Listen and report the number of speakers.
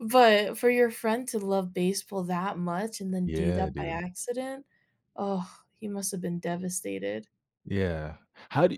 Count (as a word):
two